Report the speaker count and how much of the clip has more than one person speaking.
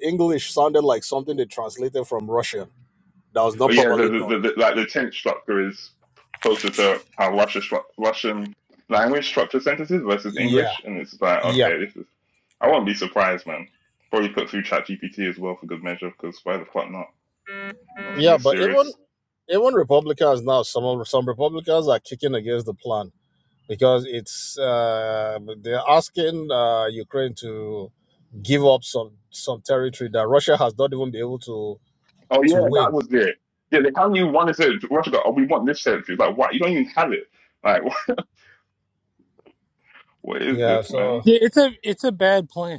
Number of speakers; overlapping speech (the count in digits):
3, about 8%